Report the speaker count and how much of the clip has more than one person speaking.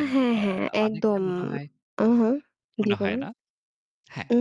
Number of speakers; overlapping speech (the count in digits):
2, about 31%